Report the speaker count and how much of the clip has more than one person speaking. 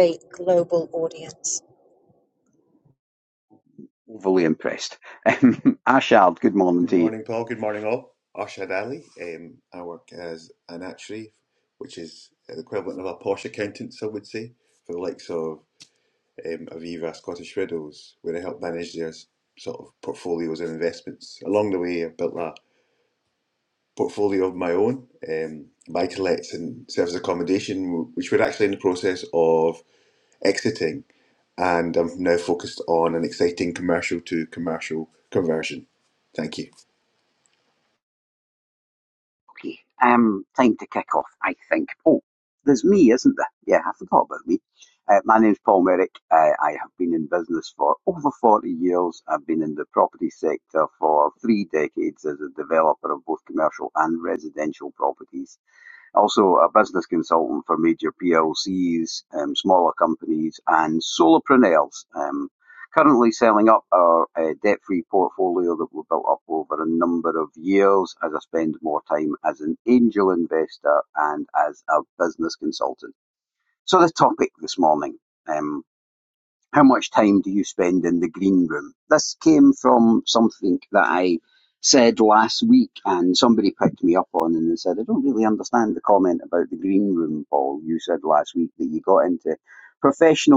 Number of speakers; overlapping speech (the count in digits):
3, under 1%